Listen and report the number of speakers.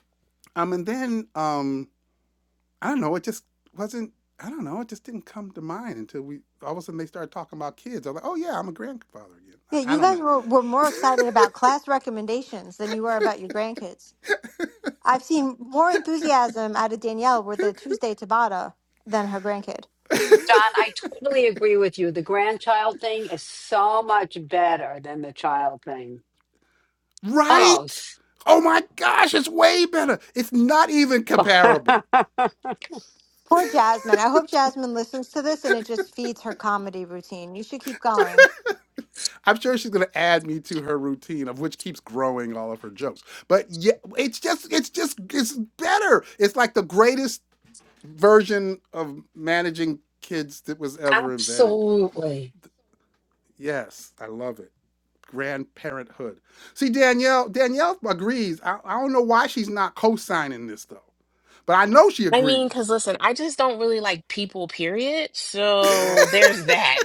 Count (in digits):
4